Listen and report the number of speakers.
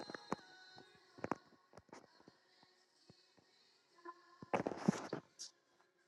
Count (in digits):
0